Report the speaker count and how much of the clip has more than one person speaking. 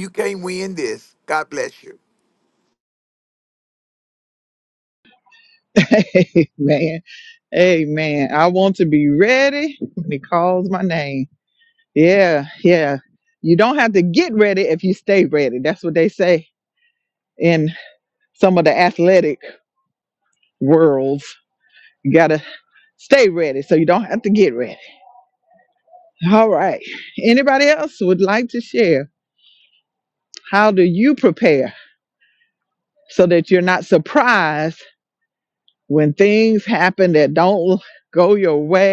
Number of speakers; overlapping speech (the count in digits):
2, no overlap